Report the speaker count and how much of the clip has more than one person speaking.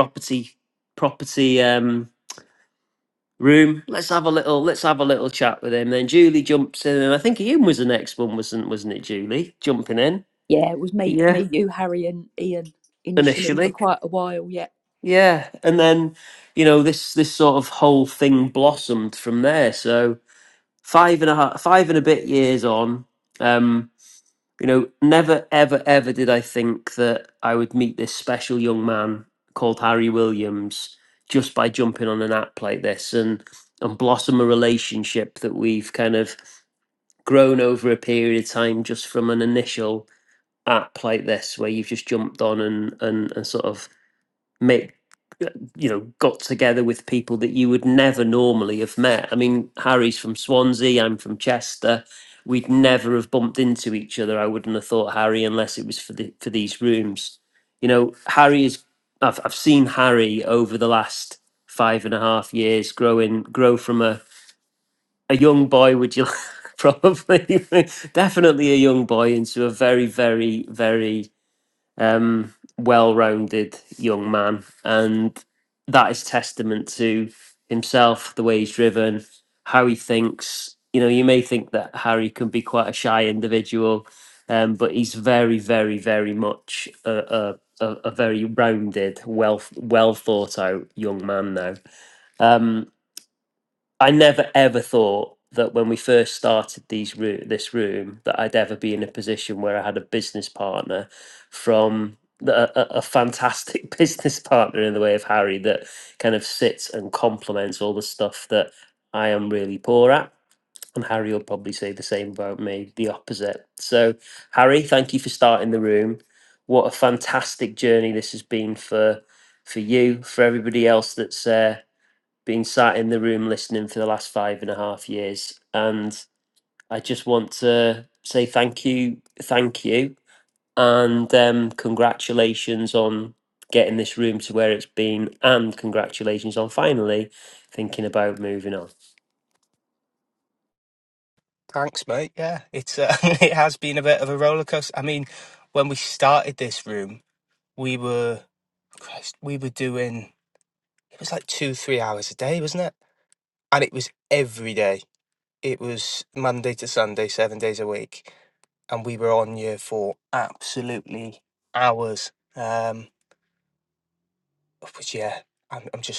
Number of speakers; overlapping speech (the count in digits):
3, about 1%